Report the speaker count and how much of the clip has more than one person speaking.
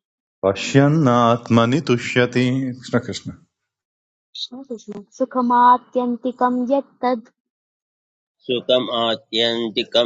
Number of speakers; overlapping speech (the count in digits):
3, no overlap